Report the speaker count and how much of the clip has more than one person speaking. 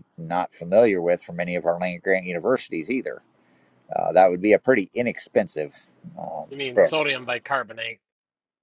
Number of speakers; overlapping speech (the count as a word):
two, about 5%